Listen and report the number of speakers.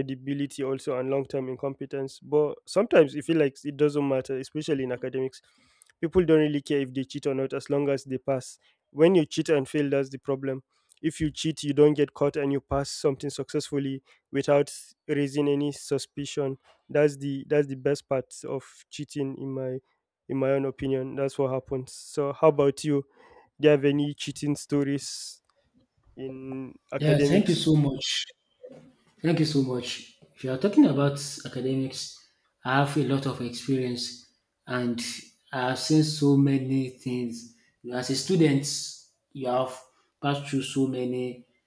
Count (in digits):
2